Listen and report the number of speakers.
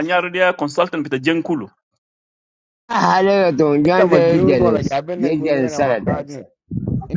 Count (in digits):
3